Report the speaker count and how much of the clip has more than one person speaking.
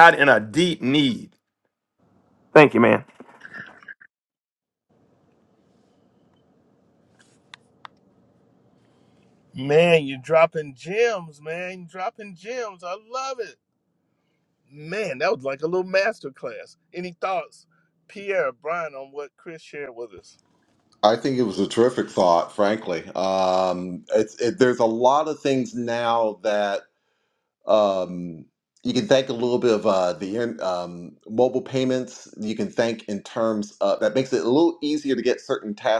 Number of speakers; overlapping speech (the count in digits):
3, no overlap